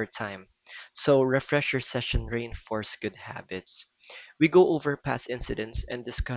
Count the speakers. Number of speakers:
1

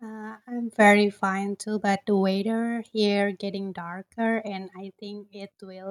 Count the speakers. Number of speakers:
1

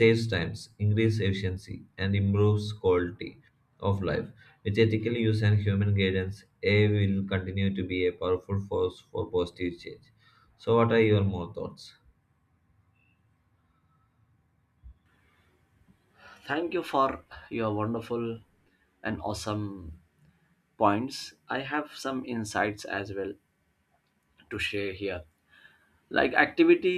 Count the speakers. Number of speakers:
2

